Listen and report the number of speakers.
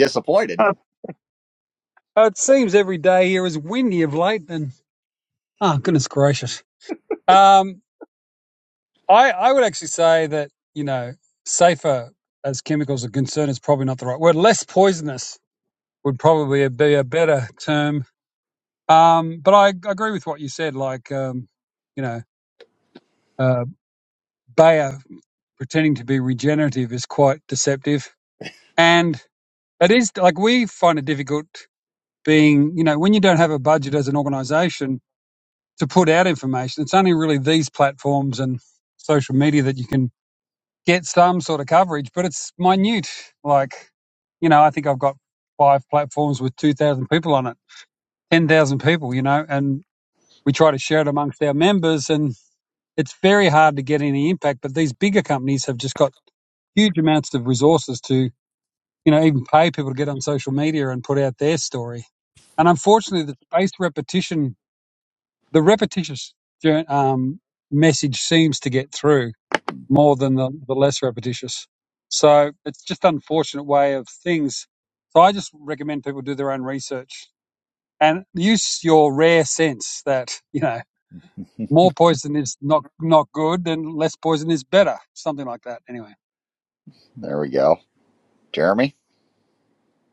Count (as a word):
two